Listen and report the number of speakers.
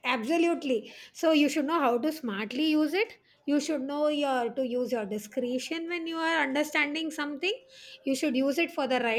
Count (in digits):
1